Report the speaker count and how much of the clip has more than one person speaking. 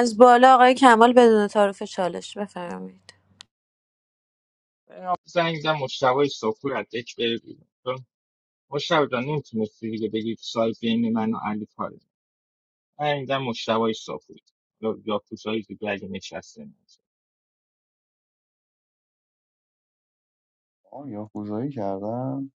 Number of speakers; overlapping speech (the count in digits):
3, no overlap